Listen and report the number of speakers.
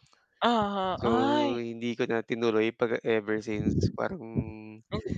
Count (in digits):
2